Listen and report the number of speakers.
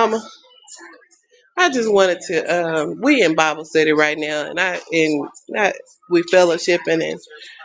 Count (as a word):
one